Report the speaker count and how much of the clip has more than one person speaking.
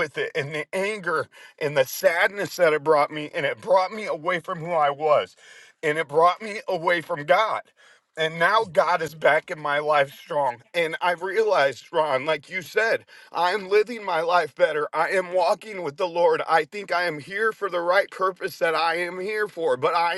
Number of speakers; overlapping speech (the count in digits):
1, no overlap